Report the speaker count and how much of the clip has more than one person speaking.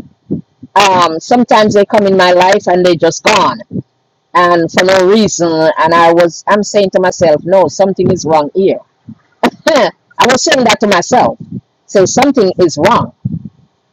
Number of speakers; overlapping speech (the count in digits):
1, no overlap